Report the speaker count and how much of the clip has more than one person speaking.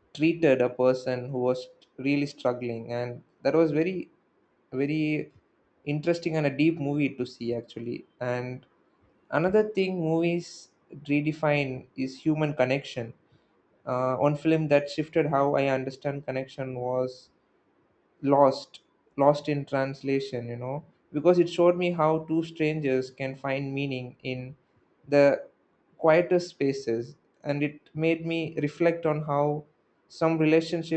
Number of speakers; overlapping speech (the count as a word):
one, no overlap